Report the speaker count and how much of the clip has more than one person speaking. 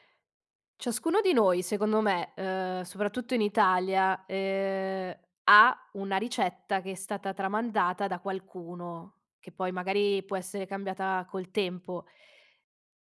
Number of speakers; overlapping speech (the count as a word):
one, no overlap